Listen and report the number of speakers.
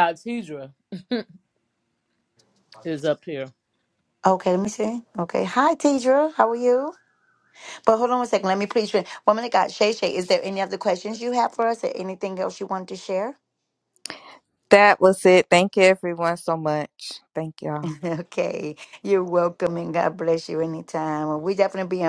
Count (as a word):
three